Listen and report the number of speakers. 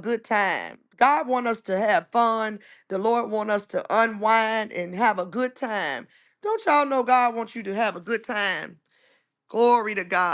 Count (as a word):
one